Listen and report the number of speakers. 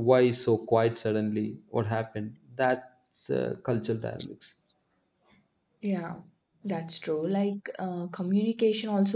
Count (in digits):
2